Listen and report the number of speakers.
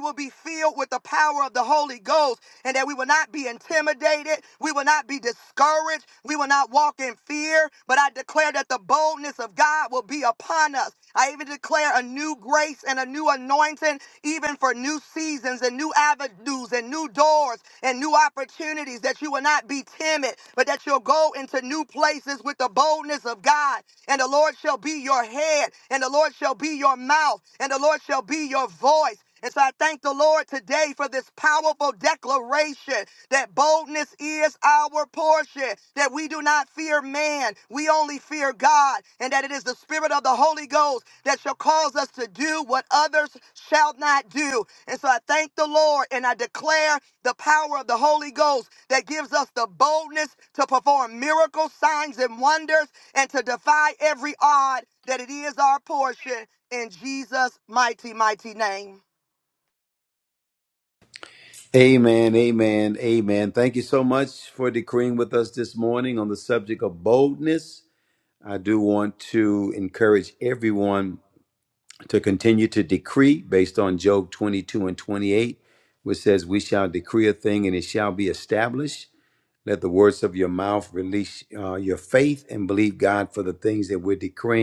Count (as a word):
two